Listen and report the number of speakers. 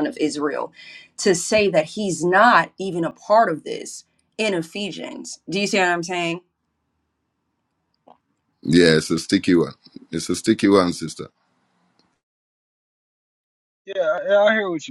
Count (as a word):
three